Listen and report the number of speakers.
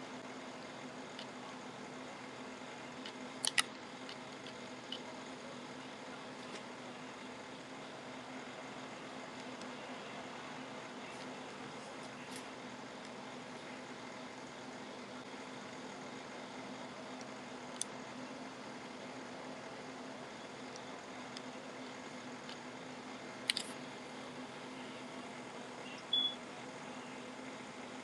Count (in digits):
0